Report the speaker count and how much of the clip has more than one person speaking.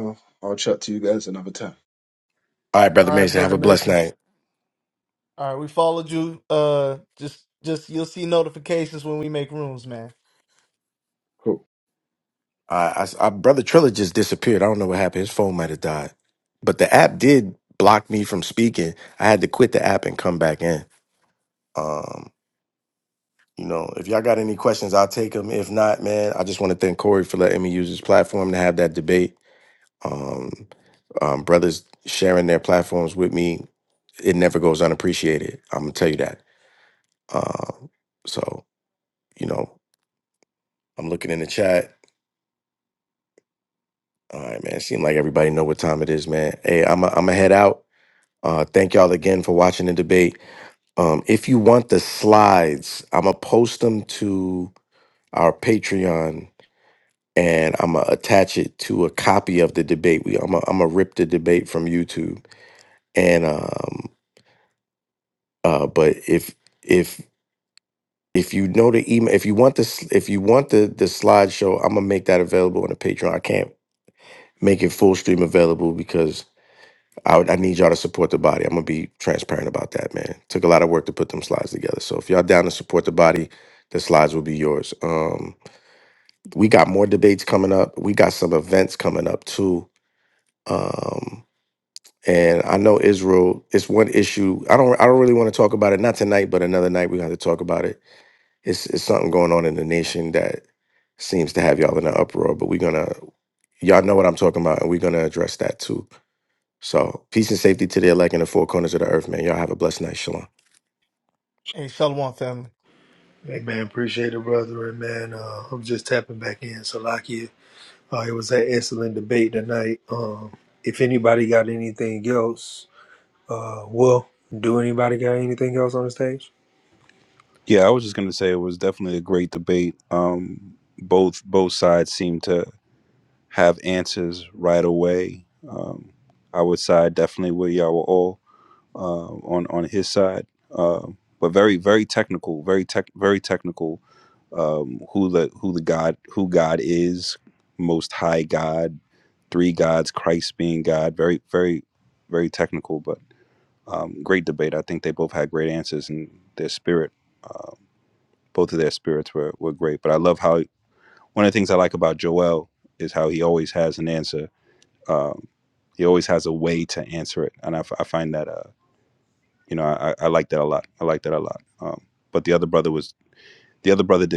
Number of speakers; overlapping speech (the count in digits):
5, about 1%